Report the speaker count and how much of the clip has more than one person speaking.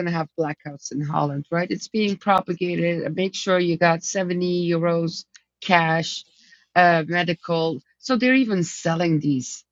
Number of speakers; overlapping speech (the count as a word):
one, no overlap